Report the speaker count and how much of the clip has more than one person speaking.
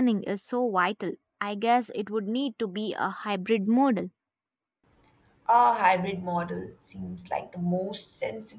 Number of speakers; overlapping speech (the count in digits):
2, no overlap